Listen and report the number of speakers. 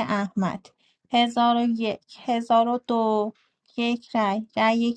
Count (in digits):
1